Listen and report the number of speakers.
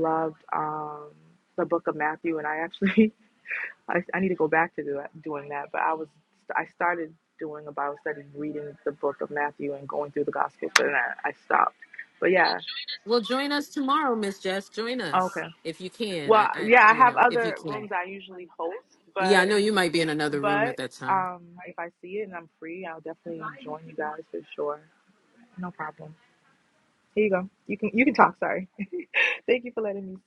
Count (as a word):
two